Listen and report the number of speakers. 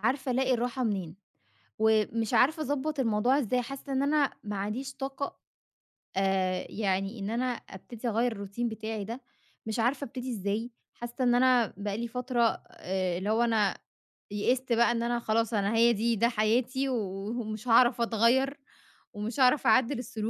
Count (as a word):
one